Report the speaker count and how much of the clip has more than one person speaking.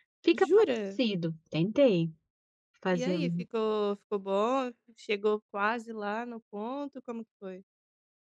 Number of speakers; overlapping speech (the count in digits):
2, about 14%